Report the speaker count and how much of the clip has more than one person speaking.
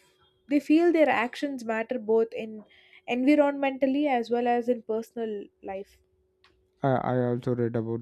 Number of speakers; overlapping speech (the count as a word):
two, no overlap